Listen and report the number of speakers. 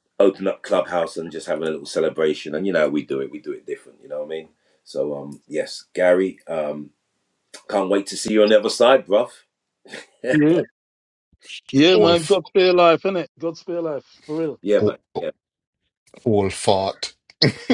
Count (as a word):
three